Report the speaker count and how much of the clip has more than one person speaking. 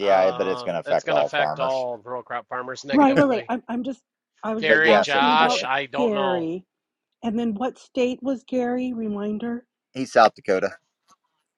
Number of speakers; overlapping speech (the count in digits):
3, about 34%